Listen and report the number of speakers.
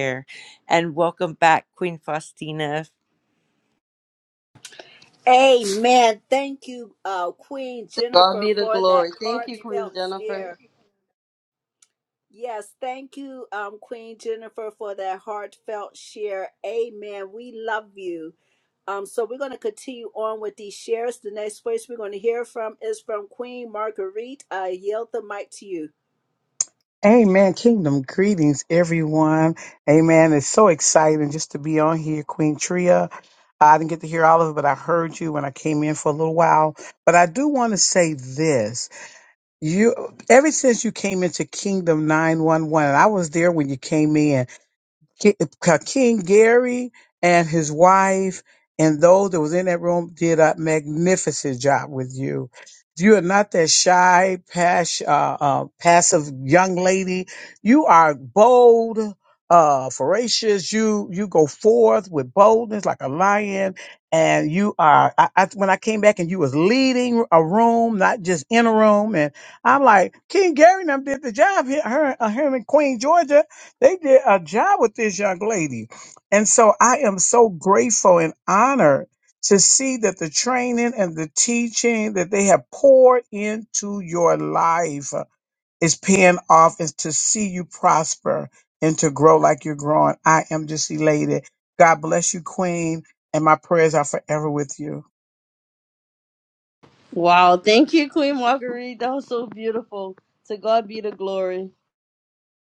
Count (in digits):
4